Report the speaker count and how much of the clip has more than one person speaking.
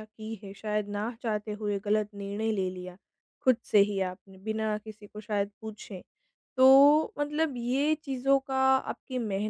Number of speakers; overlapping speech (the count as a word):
one, no overlap